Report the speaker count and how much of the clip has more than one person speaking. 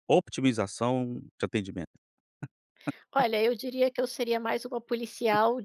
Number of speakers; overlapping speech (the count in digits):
2, no overlap